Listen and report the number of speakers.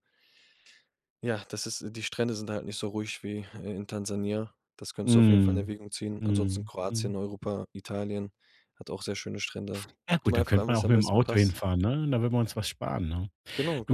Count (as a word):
two